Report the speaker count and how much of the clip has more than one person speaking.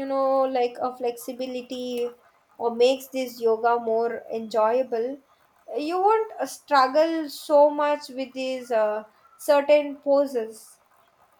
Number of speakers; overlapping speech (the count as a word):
one, no overlap